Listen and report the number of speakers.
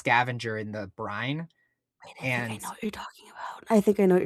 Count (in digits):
2